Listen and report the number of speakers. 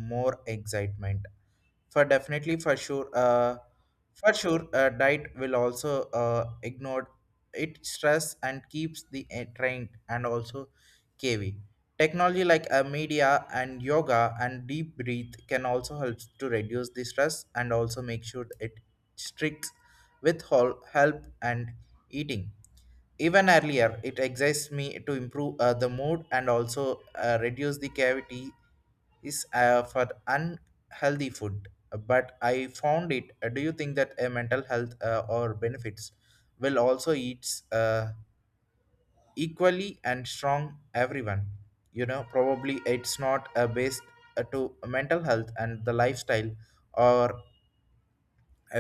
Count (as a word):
one